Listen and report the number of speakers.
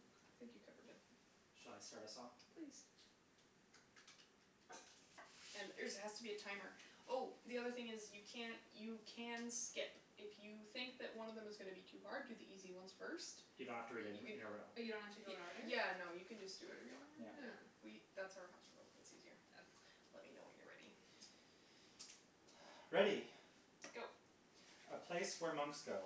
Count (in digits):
3